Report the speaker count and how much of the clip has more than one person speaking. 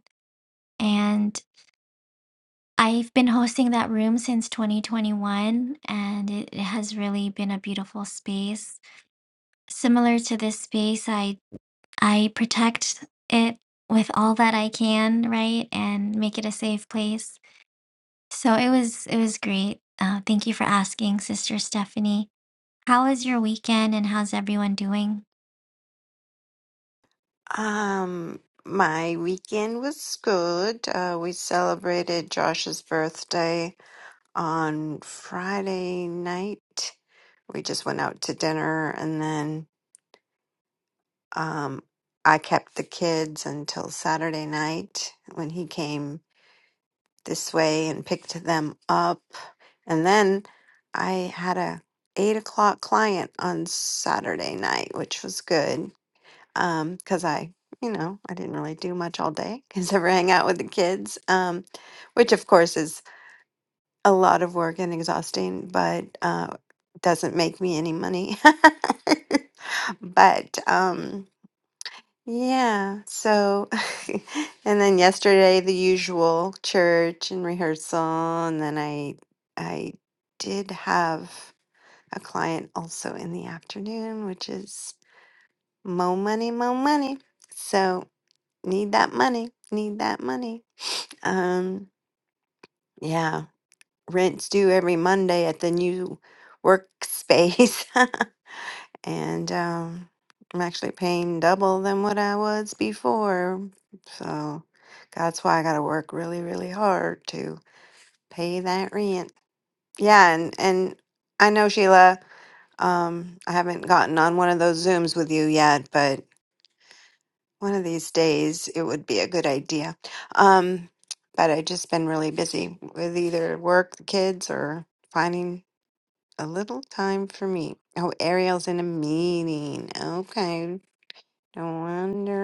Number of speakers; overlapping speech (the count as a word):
two, no overlap